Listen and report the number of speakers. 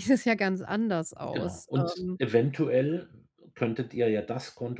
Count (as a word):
two